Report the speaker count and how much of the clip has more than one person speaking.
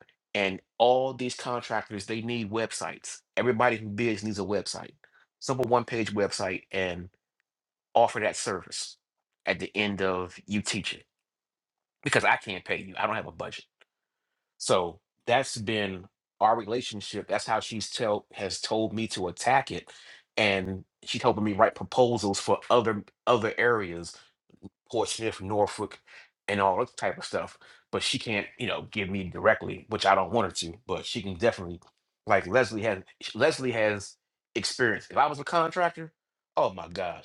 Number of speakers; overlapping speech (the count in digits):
1, no overlap